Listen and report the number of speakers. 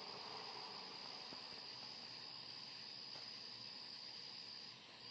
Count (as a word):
zero